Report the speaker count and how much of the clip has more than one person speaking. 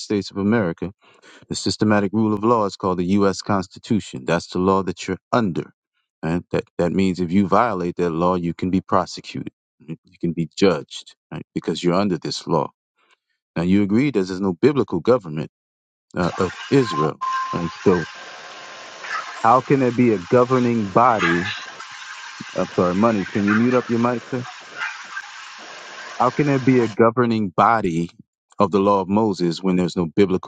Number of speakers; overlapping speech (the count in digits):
1, no overlap